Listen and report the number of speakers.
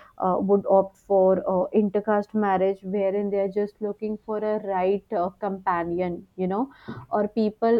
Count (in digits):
1